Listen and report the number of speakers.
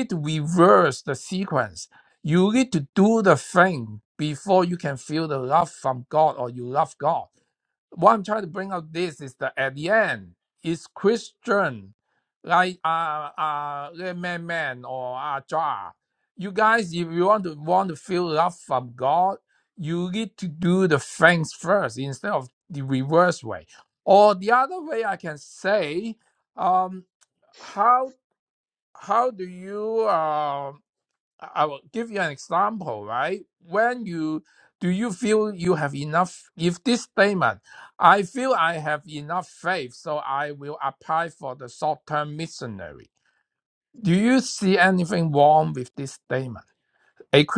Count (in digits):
1